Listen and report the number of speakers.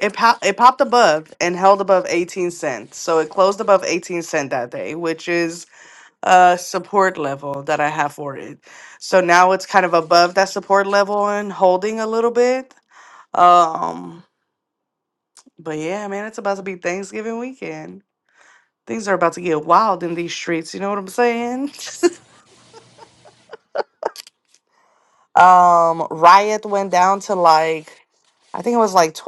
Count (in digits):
1